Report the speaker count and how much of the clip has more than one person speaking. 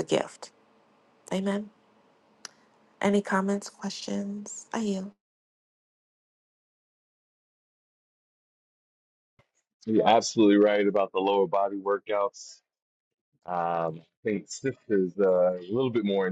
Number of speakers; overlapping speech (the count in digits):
2, no overlap